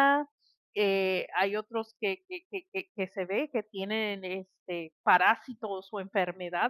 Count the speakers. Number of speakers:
1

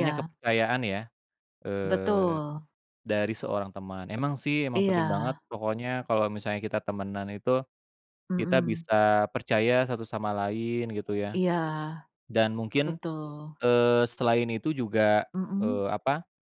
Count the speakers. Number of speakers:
2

